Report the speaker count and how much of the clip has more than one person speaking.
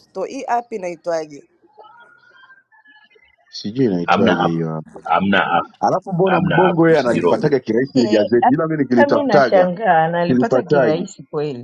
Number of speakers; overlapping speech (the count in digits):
4, about 33%